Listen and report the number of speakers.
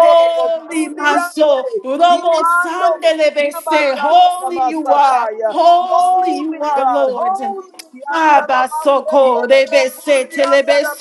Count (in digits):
2